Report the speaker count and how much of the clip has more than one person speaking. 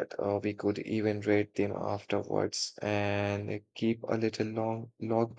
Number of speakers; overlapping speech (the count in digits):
1, no overlap